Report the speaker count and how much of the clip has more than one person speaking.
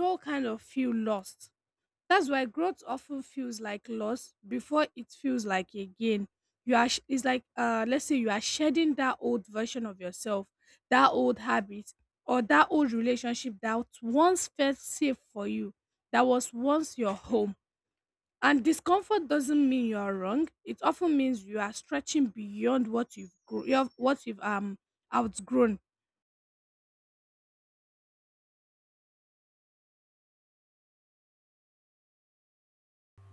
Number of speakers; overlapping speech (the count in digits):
1, no overlap